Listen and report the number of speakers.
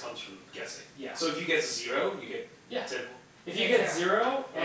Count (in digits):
2